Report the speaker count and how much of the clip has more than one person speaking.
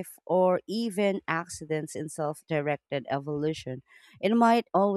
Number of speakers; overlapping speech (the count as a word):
one, no overlap